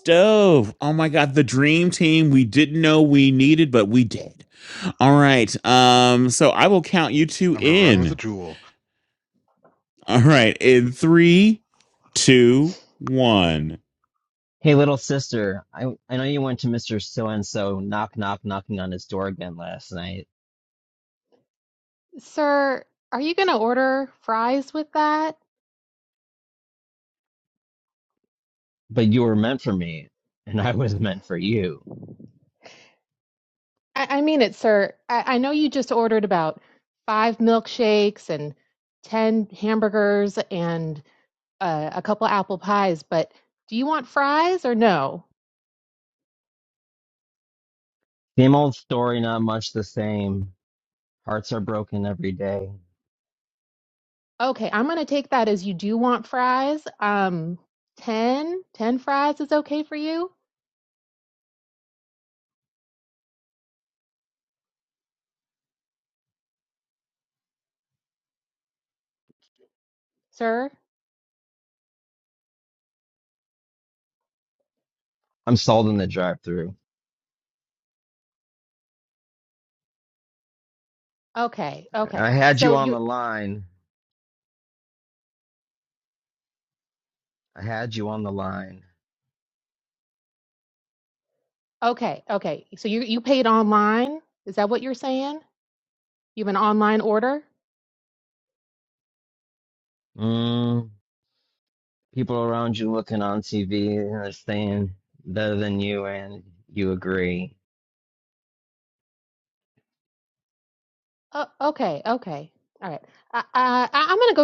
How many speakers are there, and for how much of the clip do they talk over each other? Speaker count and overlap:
4, about 1%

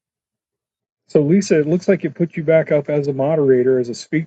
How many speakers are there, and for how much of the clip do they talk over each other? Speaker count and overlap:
1, no overlap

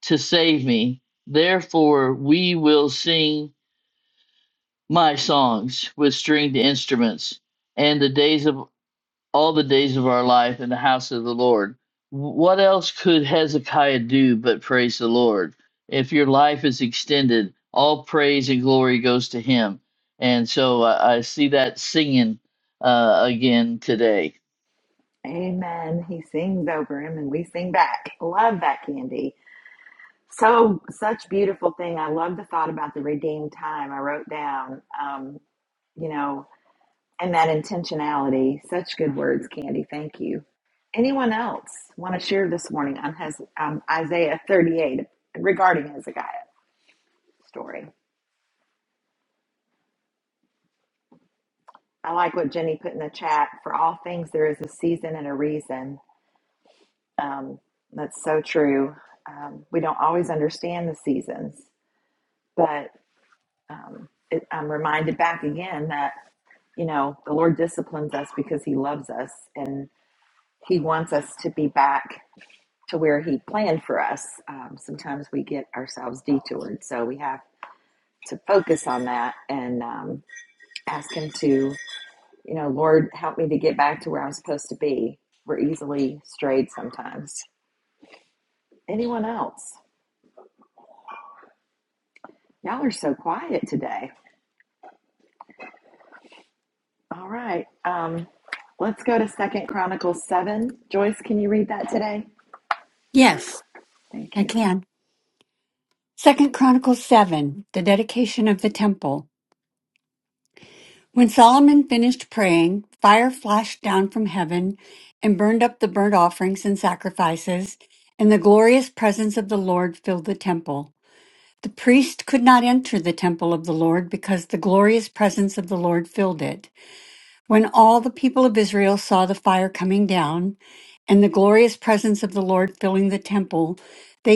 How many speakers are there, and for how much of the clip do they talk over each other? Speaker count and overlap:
3, under 1%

